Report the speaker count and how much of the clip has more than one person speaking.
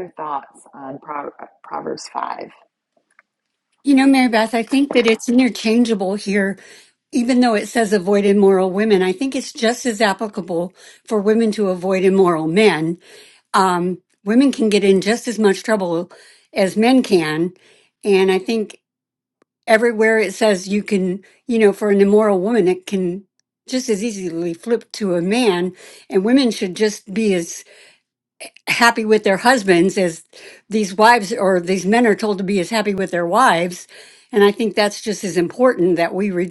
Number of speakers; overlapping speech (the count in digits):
2, no overlap